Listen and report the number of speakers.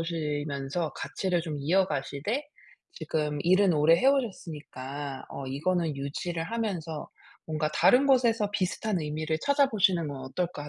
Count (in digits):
1